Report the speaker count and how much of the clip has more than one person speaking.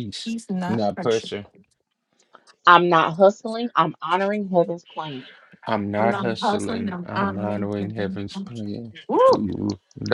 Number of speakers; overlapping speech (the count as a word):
three, about 24%